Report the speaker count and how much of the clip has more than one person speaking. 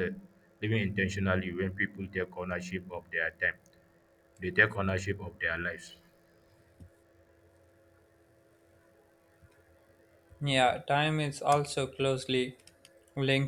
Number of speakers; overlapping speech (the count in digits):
2, no overlap